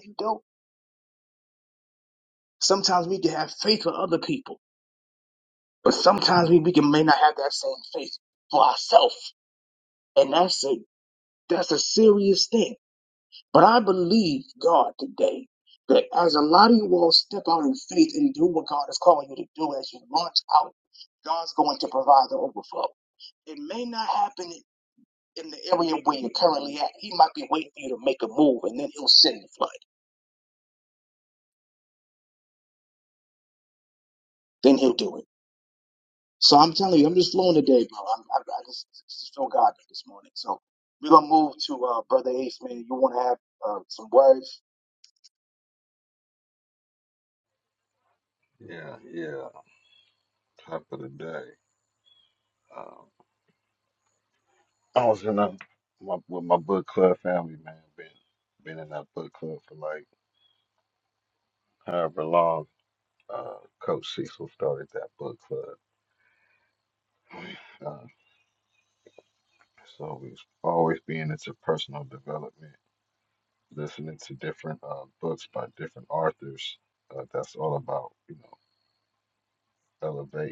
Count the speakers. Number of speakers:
two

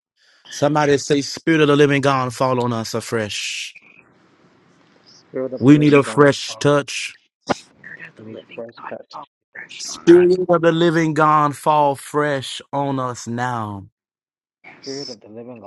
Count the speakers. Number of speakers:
three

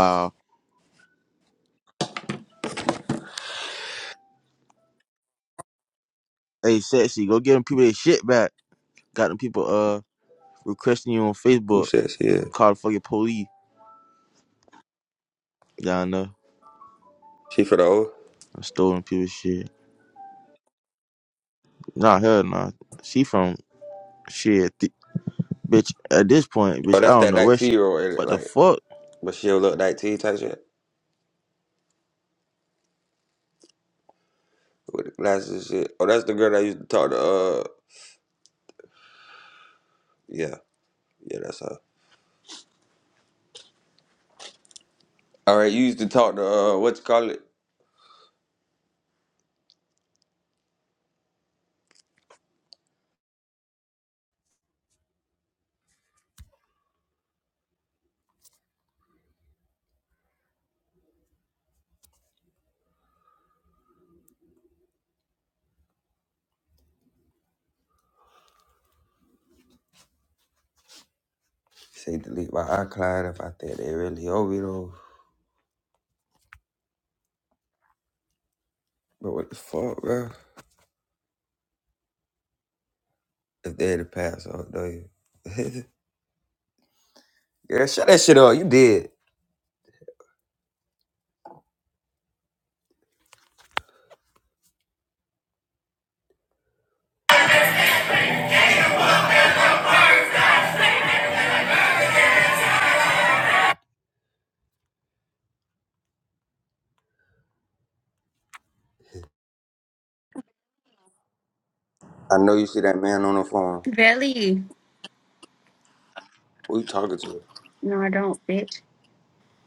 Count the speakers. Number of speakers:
three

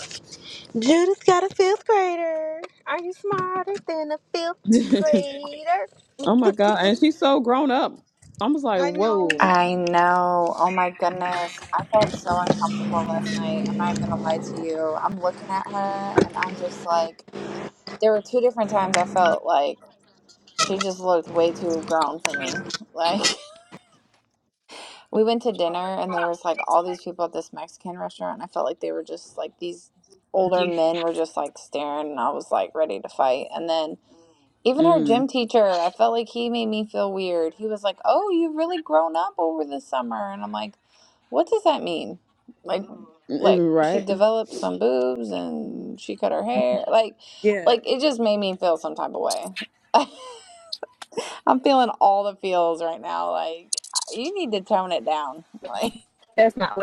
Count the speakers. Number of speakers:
three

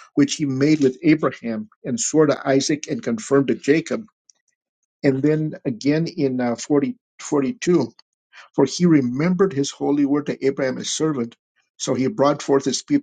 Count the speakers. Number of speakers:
one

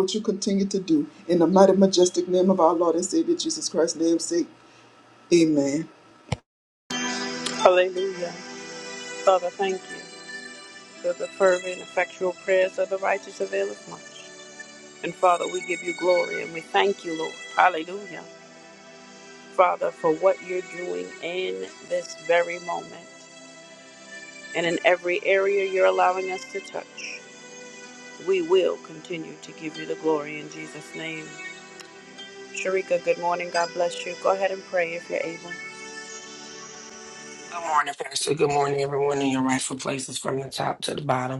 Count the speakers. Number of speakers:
three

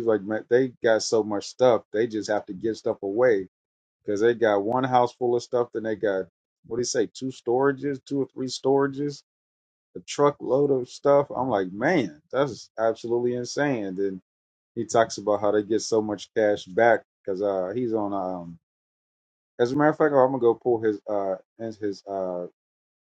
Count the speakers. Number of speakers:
one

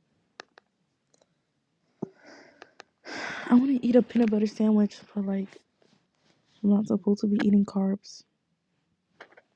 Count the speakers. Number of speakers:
one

